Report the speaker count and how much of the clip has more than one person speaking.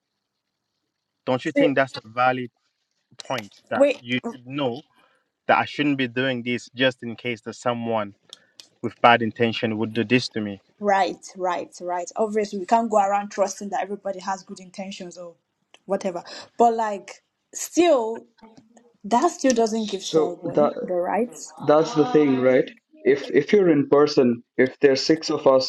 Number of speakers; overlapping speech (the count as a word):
three, about 6%